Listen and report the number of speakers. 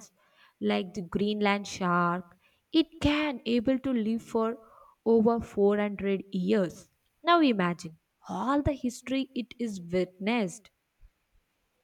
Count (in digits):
1